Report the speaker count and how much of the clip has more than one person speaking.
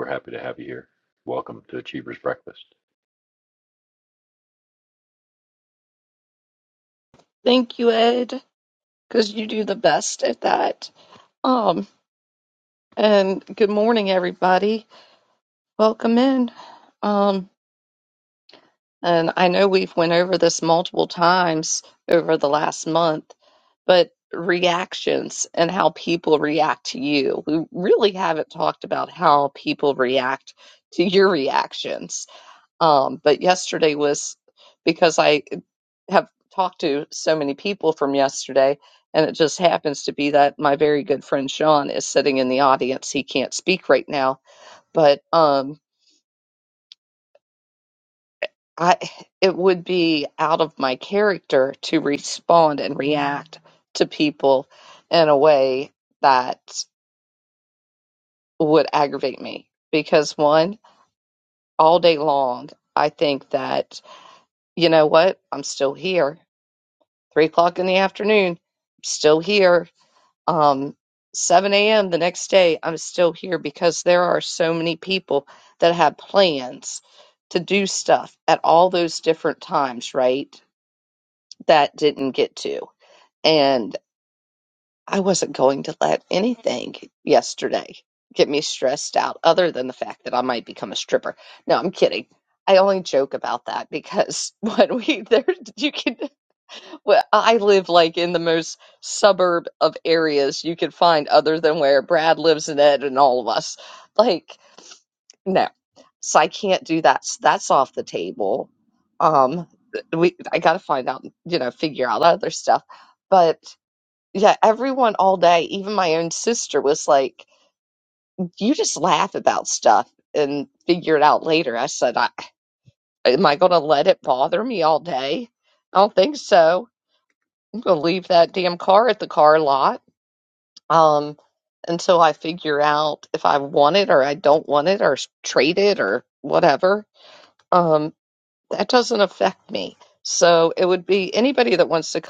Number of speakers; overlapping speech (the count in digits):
2, no overlap